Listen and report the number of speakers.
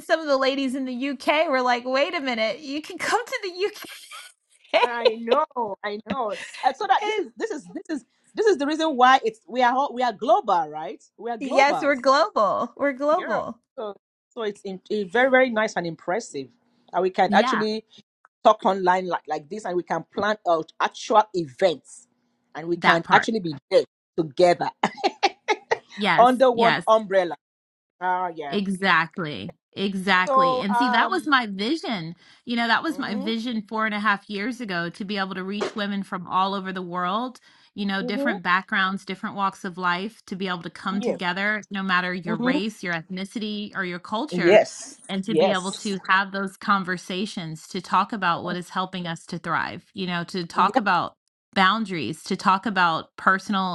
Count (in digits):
2